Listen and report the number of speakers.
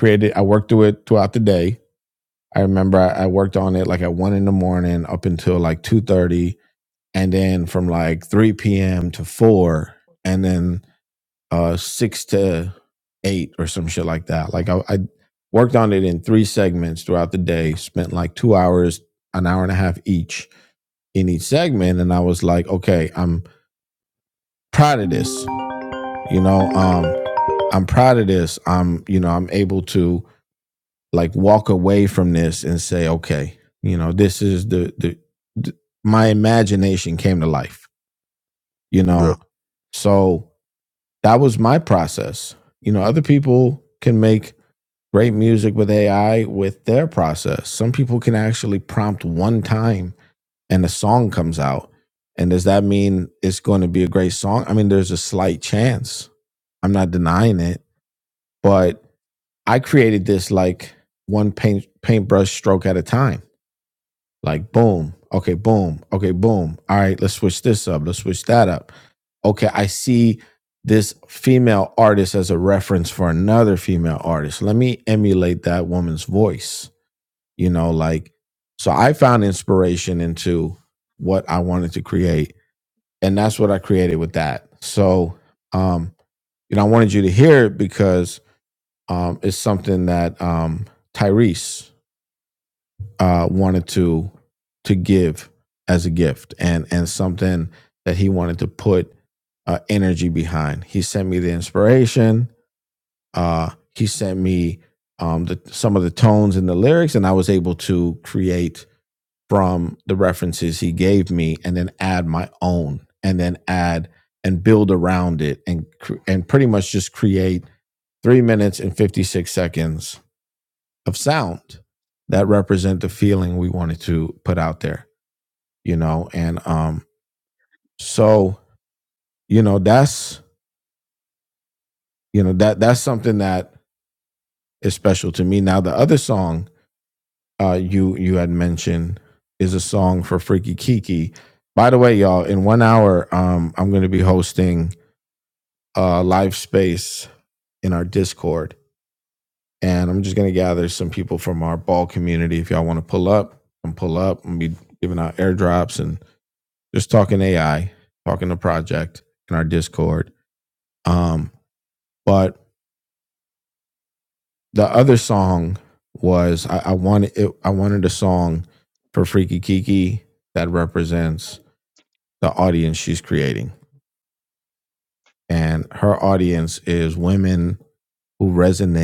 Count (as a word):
one